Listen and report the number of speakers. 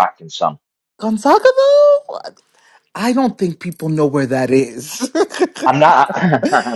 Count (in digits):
2